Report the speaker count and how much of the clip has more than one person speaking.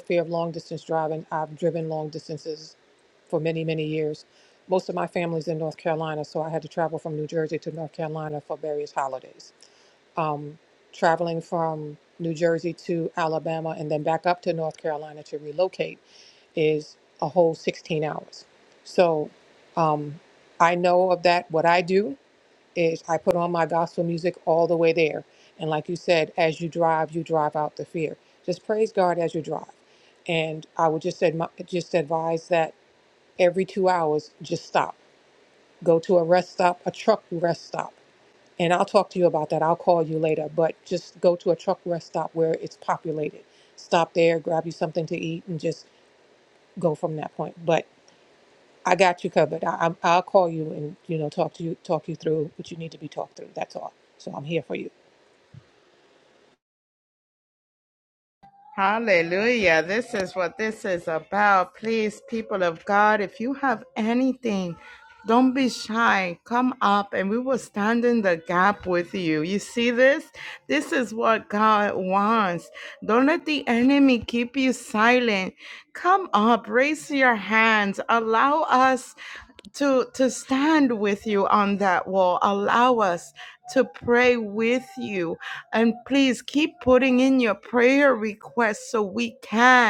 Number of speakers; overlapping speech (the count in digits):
2, no overlap